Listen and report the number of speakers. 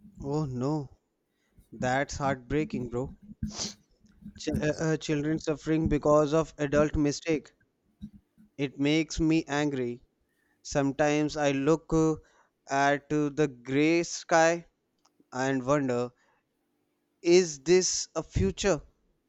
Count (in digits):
1